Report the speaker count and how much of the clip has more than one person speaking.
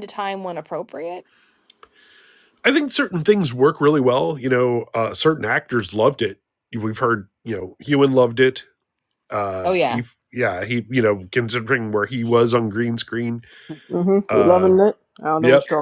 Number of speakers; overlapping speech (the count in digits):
3, about 7%